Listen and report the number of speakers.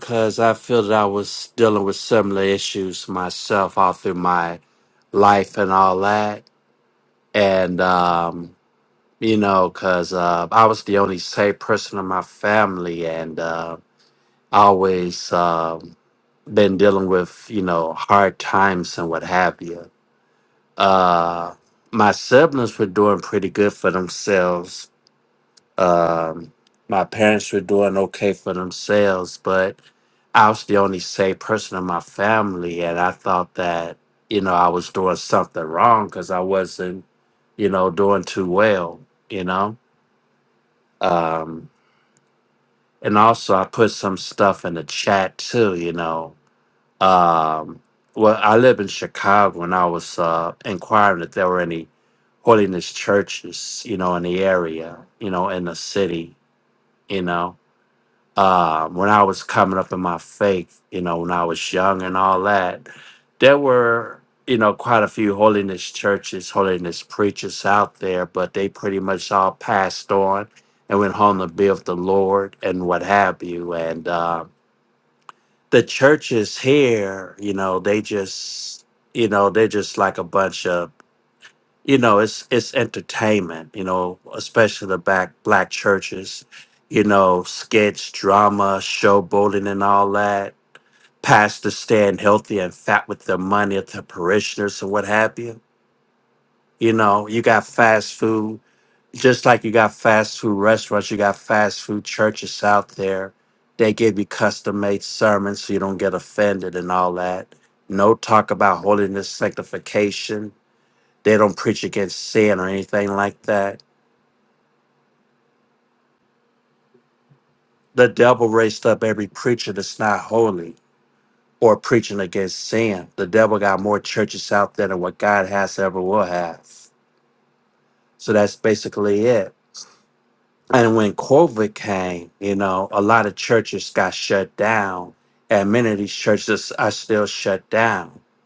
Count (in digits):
1